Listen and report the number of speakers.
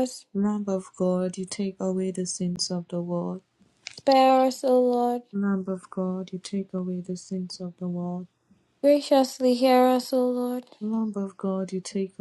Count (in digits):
2